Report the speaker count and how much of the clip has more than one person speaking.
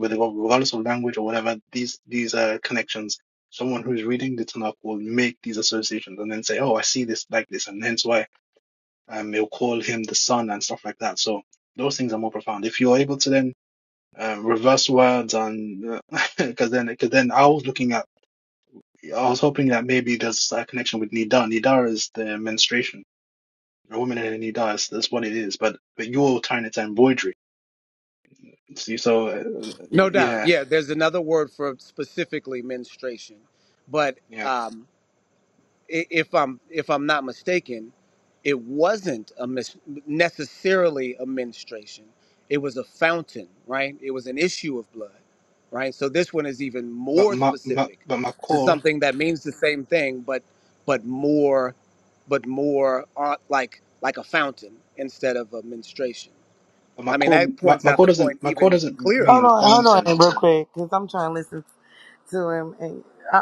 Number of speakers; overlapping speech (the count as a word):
three, about 8%